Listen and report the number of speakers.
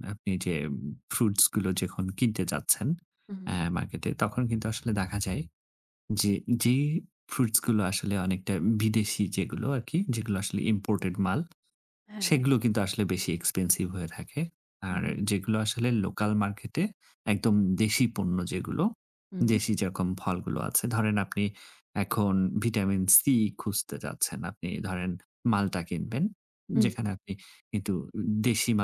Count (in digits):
2